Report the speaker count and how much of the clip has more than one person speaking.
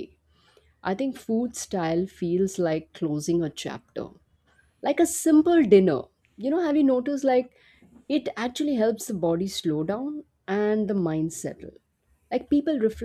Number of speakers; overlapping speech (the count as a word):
one, no overlap